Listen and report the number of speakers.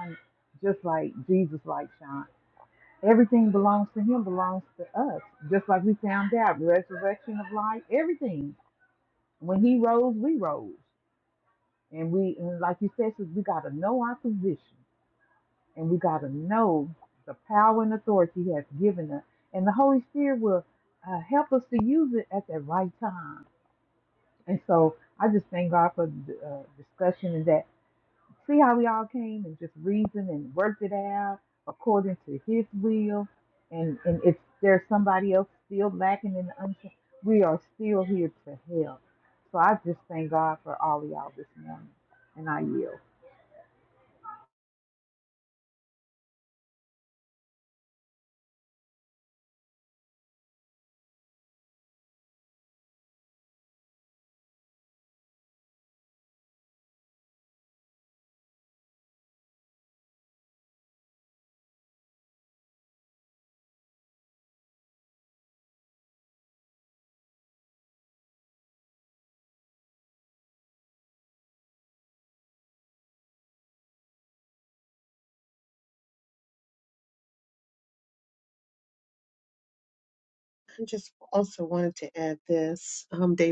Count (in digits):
2